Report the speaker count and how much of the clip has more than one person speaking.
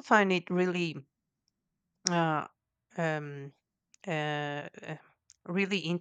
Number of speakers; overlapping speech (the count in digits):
1, no overlap